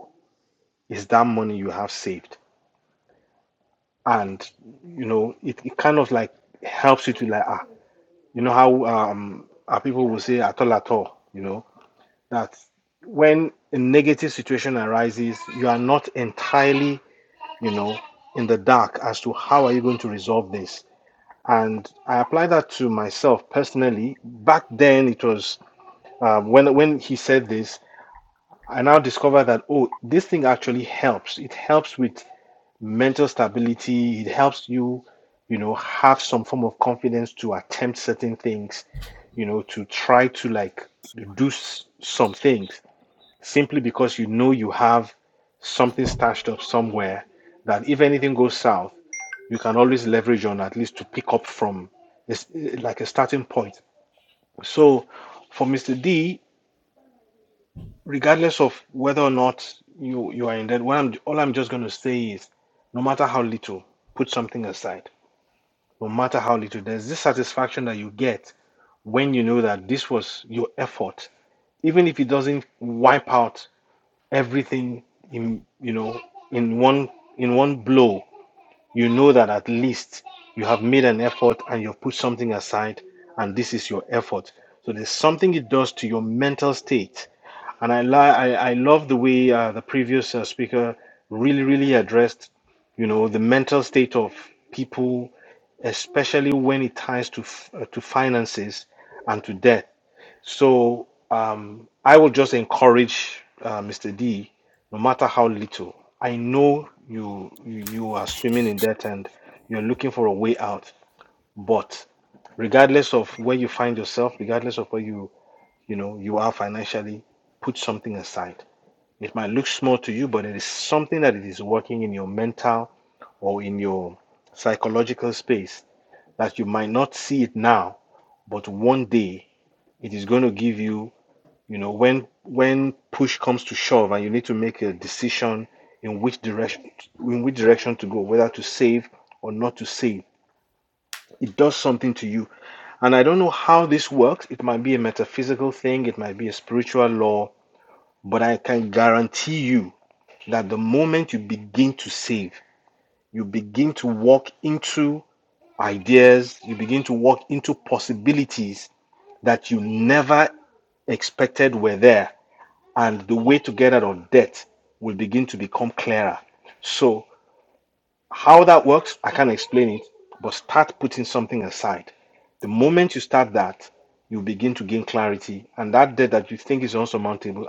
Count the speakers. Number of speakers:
one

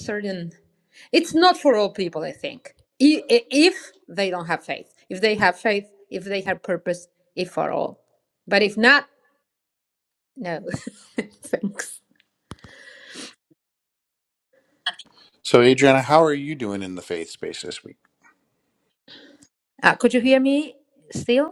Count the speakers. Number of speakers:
two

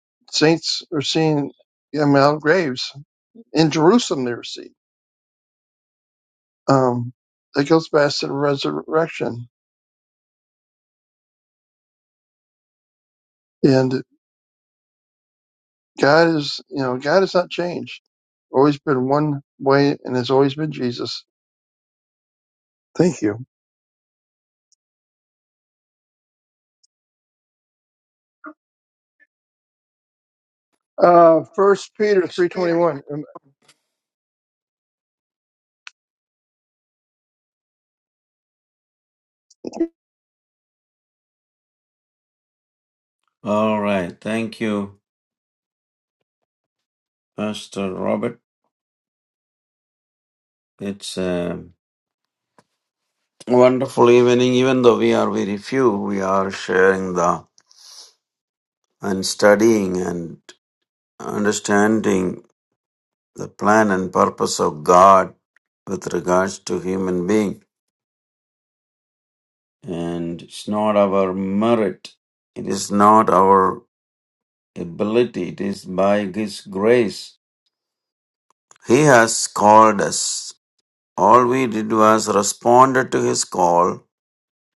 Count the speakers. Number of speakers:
two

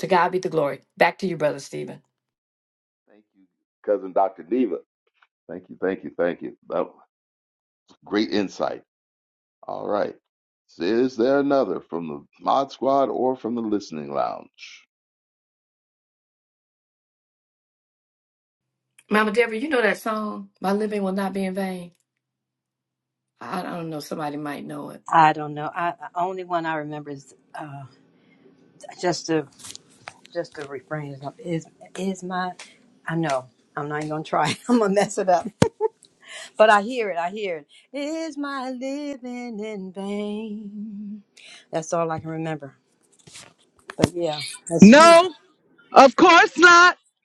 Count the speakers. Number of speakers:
four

